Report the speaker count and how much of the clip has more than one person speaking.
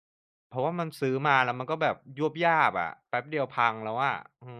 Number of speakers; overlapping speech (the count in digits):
1, no overlap